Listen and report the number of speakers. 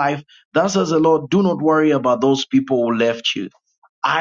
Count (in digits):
1